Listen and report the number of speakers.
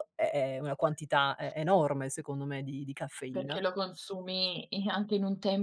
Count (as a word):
two